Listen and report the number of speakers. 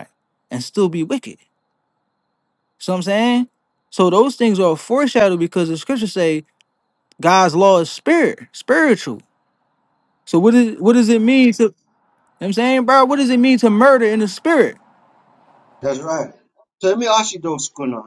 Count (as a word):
two